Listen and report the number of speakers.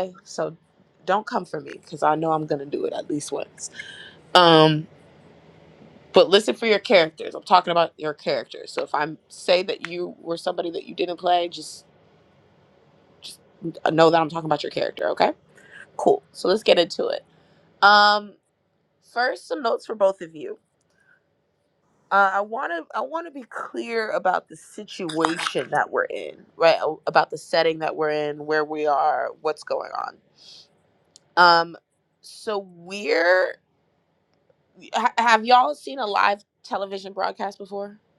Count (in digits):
1